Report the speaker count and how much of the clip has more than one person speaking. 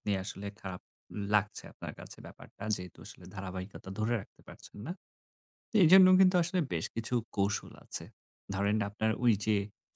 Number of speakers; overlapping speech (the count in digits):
1, no overlap